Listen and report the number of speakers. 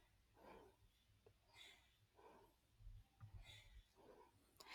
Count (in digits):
0